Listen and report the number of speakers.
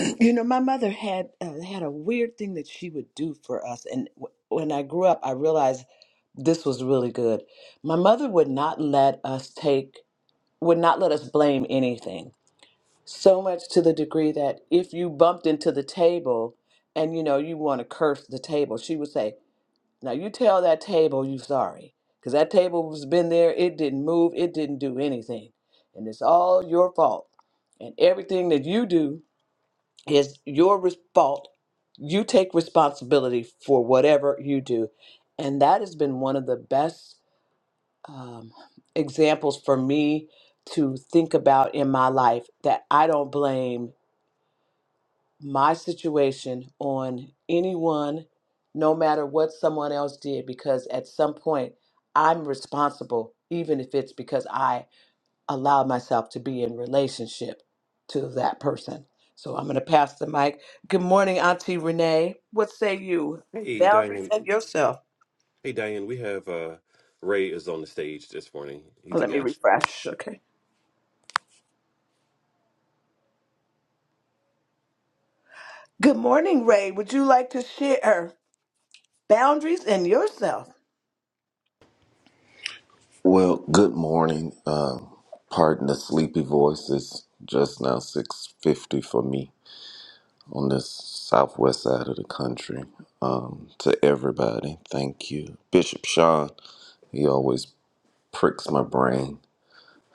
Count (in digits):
3